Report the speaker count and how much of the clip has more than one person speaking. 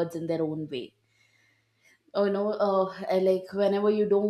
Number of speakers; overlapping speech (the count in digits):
1, no overlap